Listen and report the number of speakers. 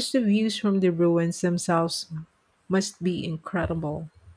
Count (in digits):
1